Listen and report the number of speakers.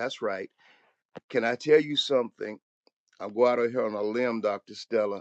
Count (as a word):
one